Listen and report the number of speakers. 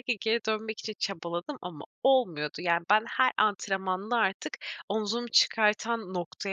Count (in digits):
1